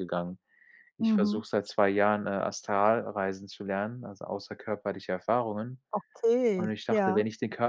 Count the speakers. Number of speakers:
2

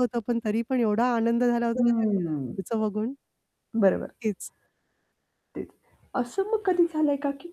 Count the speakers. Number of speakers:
2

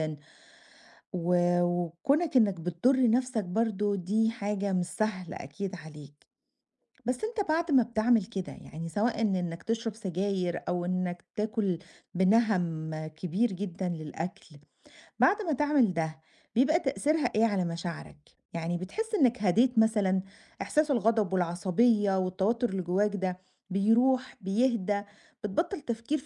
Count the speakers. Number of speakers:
1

